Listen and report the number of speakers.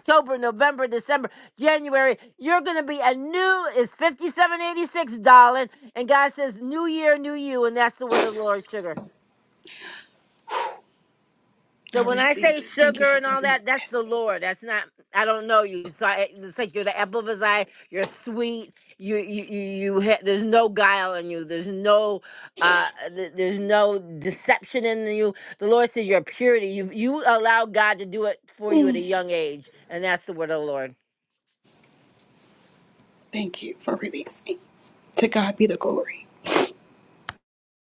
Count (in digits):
2